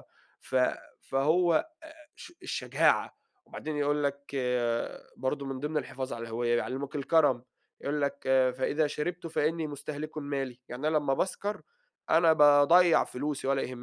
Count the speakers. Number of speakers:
1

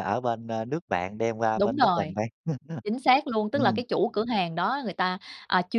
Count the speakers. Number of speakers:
2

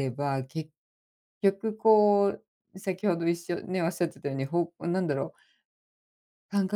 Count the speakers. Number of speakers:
1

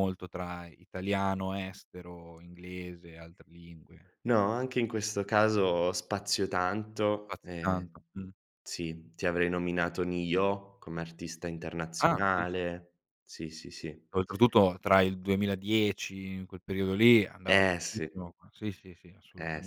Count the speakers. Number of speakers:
2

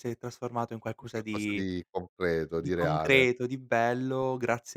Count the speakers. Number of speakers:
2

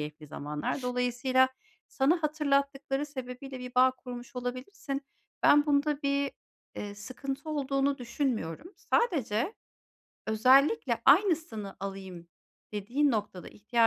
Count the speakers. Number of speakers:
1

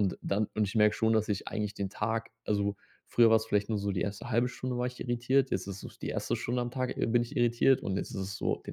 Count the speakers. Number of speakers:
1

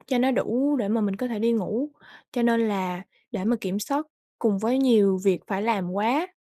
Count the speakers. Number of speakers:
1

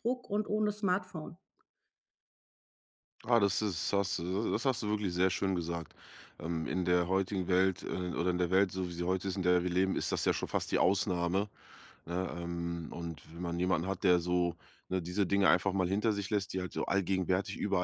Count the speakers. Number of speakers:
2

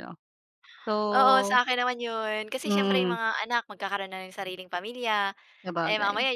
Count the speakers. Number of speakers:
2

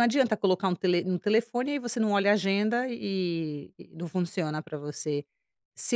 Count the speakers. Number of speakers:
1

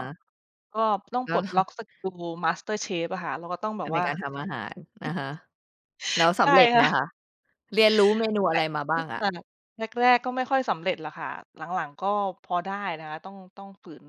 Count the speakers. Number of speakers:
2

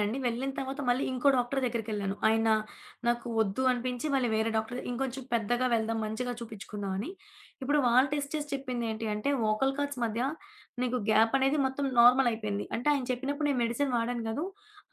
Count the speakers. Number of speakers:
1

